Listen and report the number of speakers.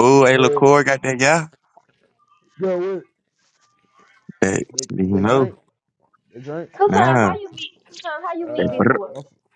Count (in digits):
3